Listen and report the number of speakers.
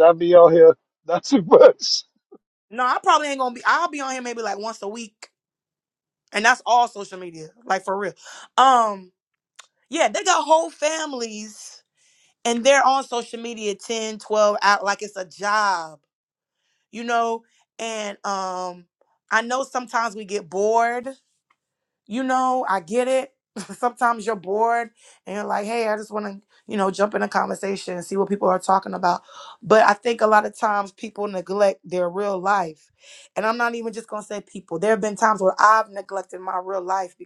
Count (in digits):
2